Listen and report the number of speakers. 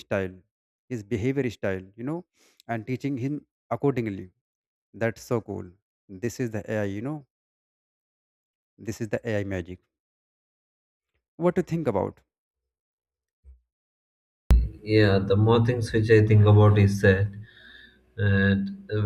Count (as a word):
two